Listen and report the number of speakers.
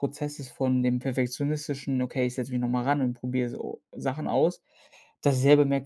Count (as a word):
one